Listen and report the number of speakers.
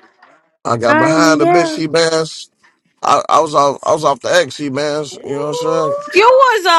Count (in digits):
2